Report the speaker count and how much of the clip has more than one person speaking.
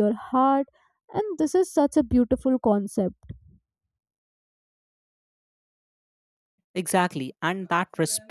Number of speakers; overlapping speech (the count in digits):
2, no overlap